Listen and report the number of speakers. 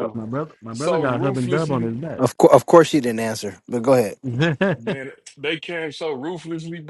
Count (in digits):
3